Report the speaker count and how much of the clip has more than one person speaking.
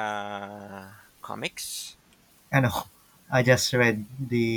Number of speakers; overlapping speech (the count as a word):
two, no overlap